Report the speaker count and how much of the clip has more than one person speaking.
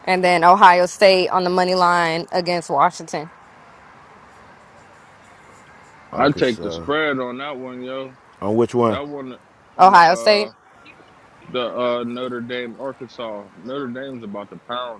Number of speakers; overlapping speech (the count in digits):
3, about 10%